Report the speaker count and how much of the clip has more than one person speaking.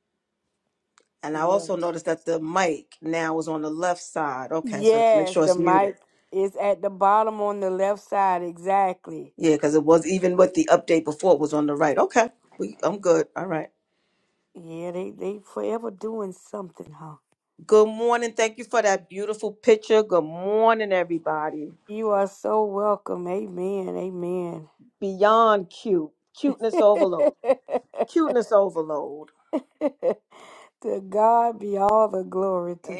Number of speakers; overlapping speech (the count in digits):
2, about 5%